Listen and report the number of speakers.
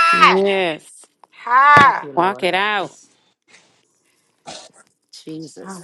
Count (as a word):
three